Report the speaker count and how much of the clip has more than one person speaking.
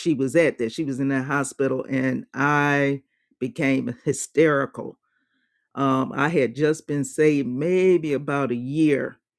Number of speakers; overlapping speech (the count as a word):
one, no overlap